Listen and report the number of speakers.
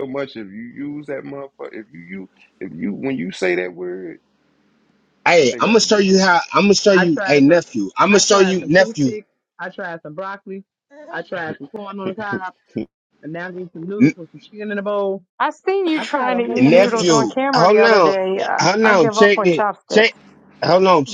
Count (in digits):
4